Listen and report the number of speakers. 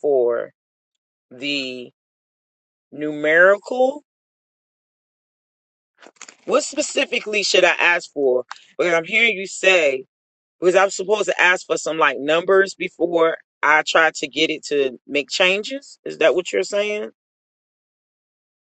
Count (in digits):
1